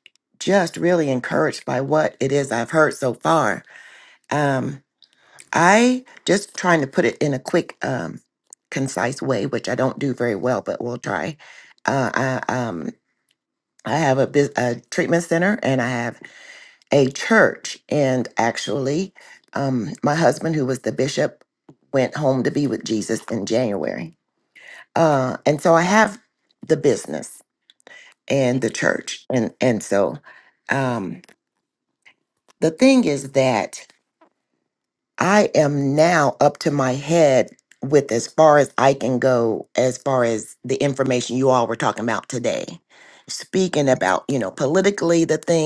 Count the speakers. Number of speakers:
1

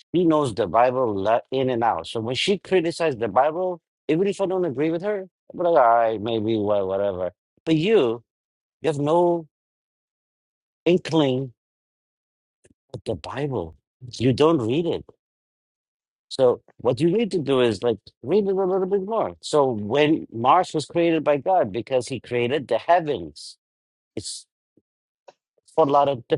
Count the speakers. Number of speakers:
1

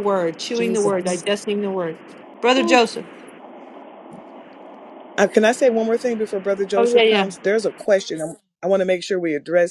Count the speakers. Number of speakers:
2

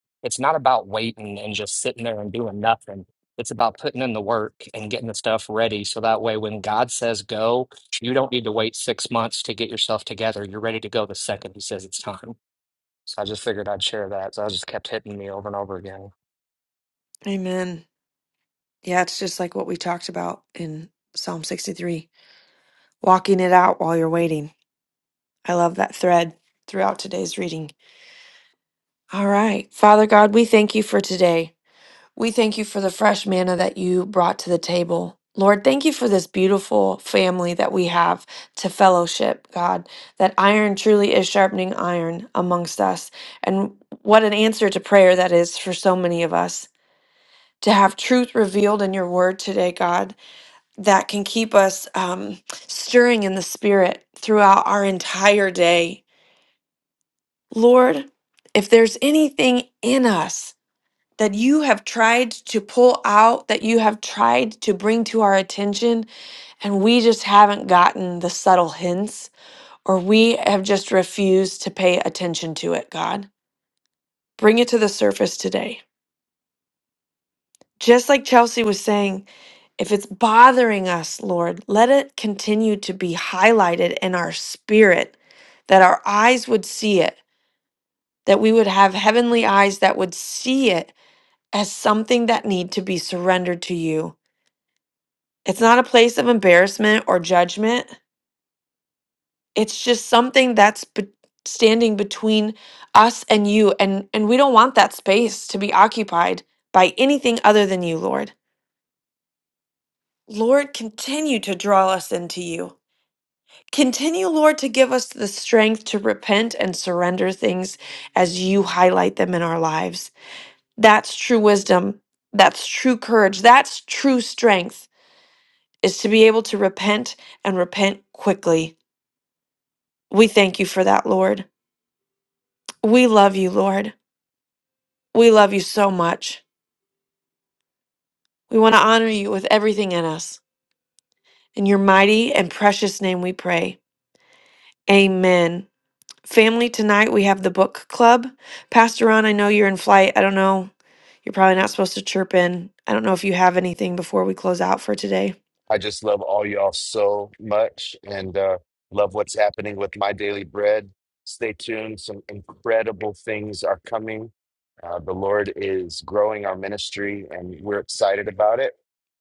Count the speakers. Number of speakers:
3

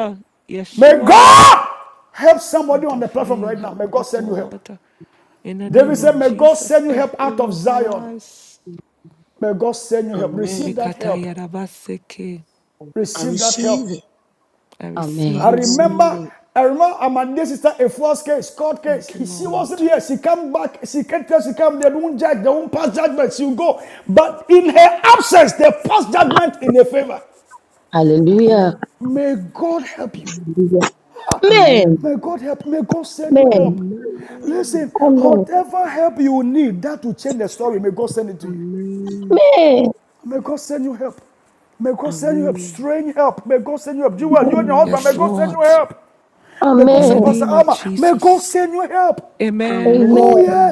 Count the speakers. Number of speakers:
4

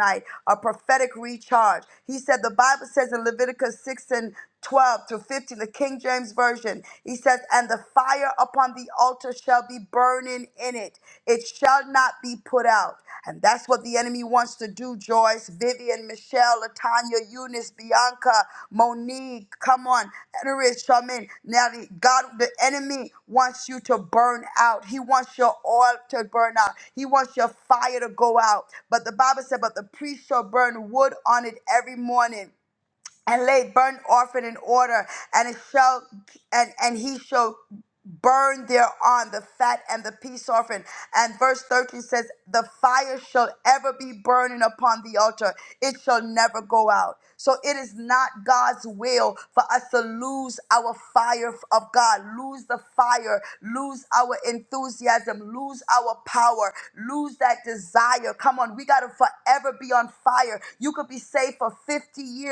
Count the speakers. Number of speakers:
1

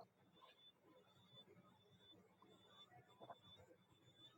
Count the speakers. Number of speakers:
0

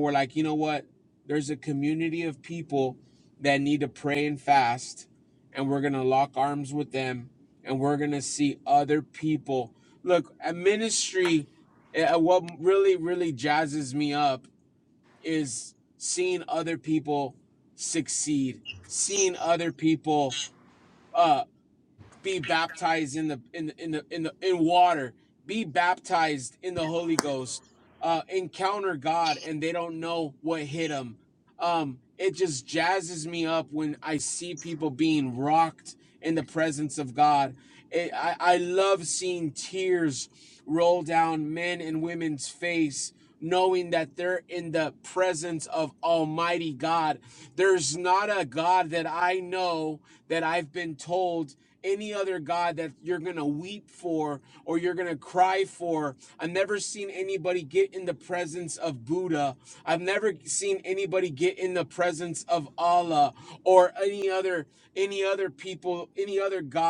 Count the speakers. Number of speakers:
1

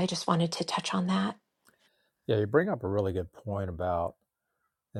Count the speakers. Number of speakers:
2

